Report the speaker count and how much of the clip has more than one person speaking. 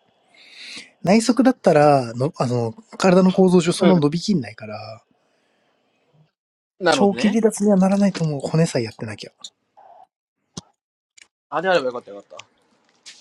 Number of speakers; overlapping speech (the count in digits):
2, about 5%